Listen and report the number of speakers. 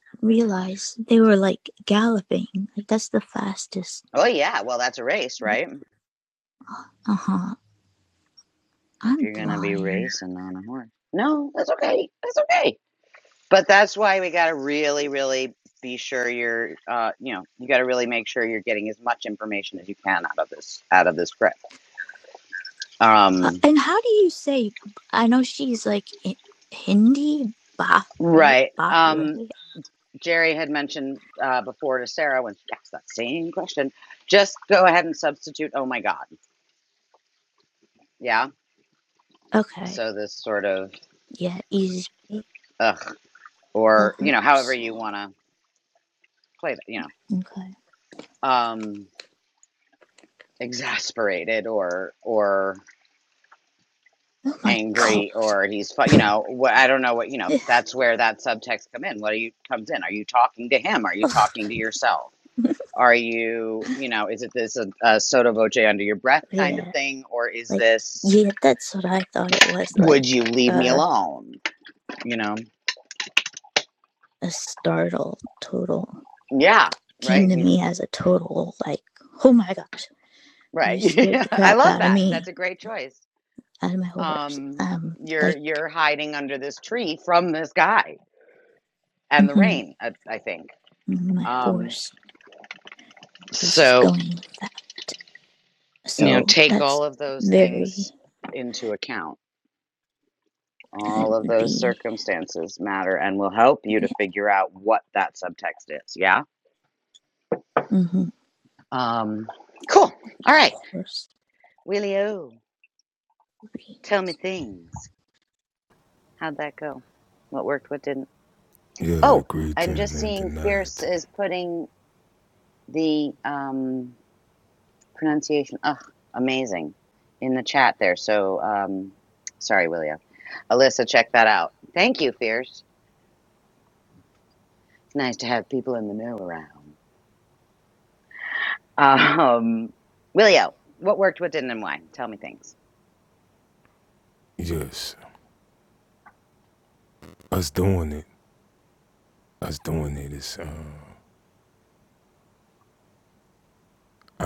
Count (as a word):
three